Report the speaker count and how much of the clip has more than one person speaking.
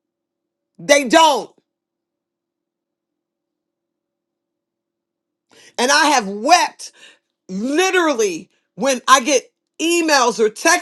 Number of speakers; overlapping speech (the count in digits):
1, no overlap